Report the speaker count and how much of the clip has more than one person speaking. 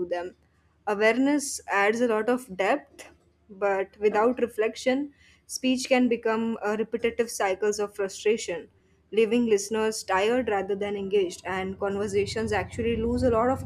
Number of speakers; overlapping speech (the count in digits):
1, no overlap